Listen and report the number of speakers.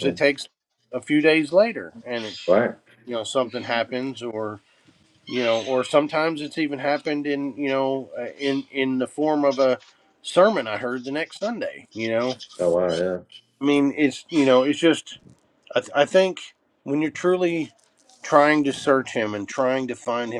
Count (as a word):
two